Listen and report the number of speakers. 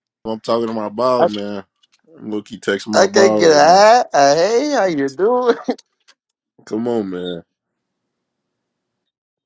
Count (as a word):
two